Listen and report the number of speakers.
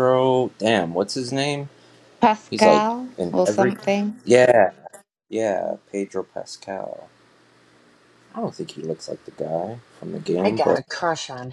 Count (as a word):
three